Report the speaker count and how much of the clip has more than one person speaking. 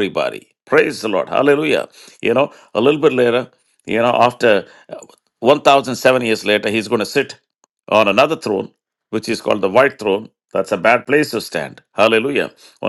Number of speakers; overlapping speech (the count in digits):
1, no overlap